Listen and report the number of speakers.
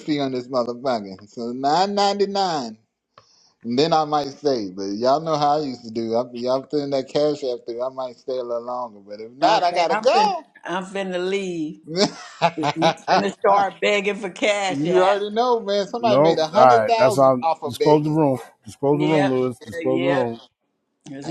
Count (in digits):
3